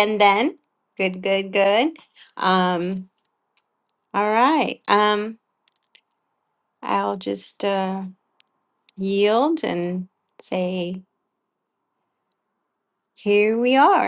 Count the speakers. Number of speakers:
1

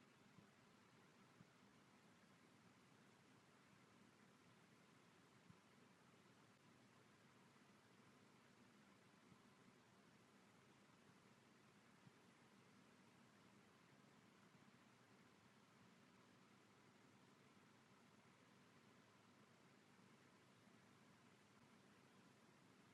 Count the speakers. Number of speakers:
0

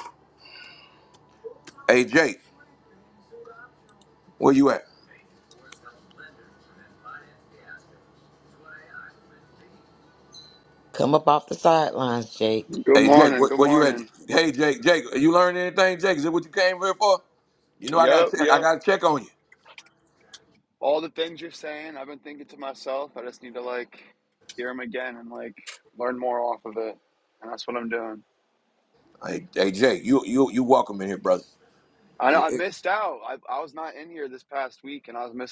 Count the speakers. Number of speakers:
3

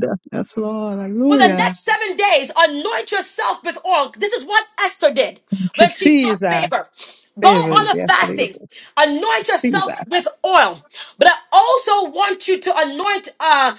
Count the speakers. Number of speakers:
2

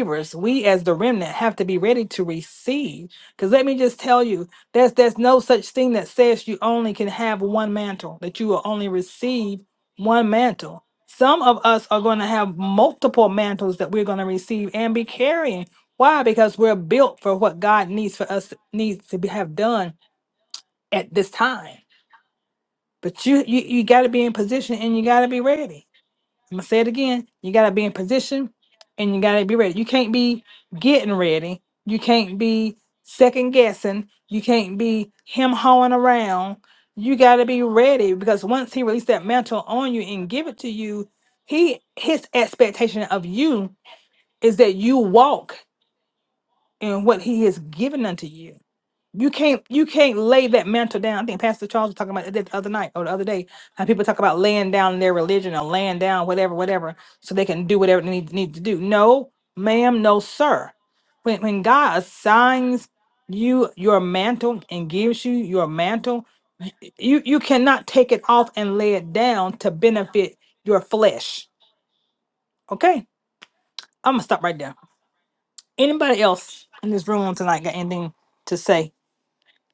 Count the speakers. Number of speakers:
1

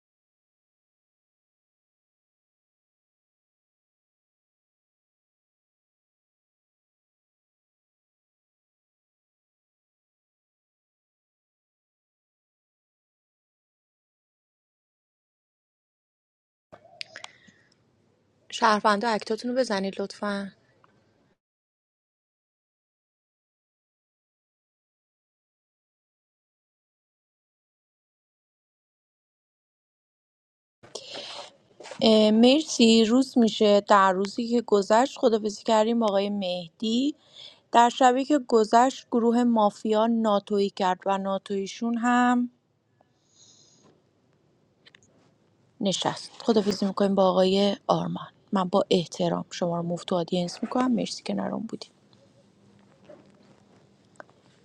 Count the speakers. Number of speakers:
1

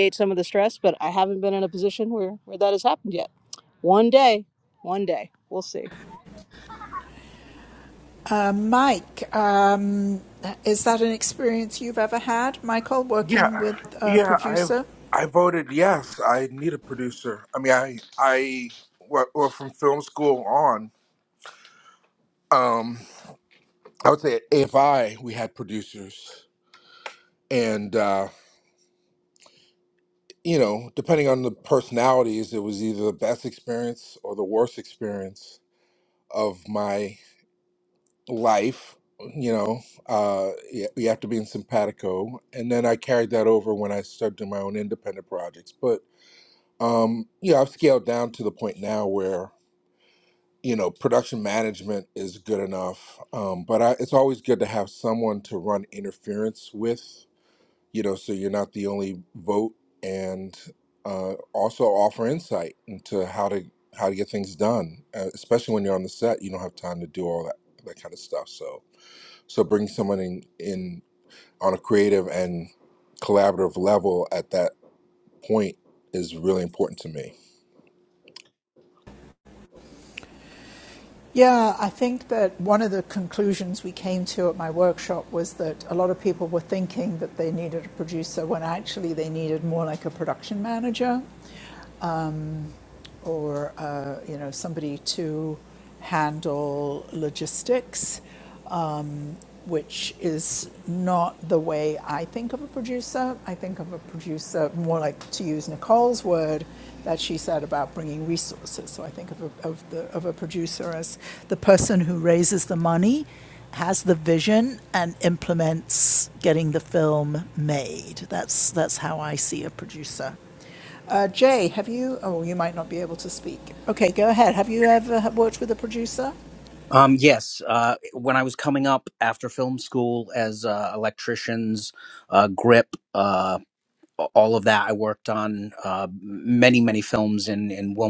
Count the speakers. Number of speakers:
4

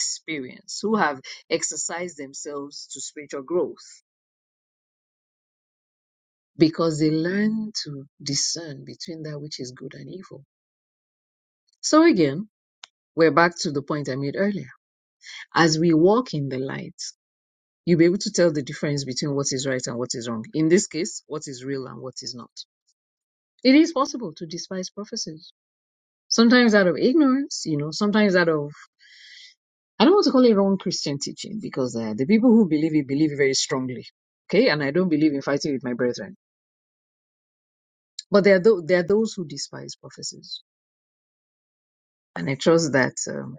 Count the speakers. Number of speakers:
1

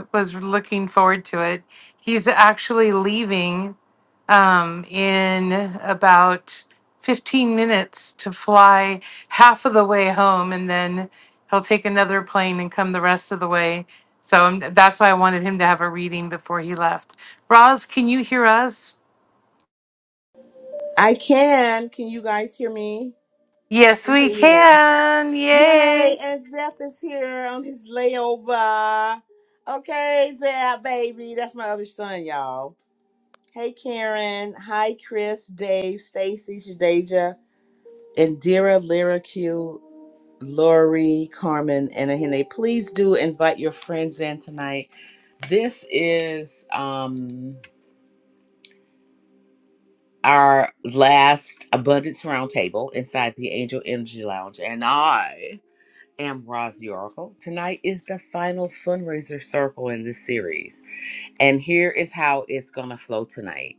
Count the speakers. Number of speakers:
2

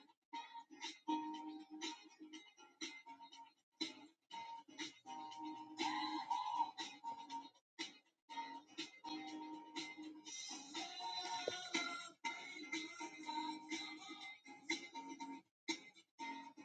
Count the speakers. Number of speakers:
0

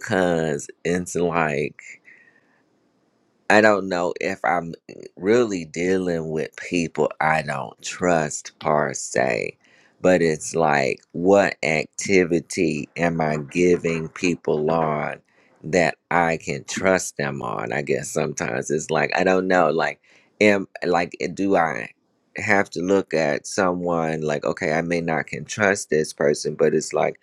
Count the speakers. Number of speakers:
1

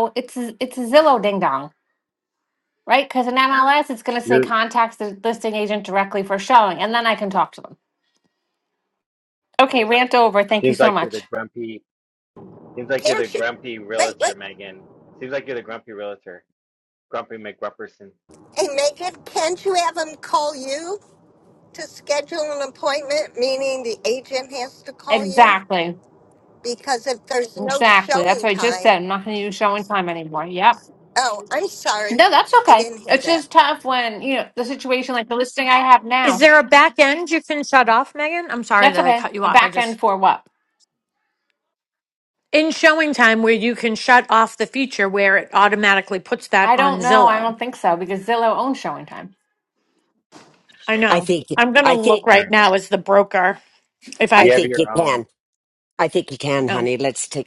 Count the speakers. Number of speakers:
5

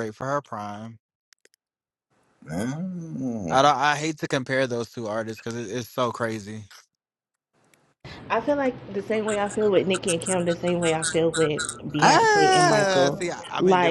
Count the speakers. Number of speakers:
3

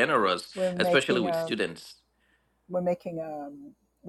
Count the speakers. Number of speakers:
2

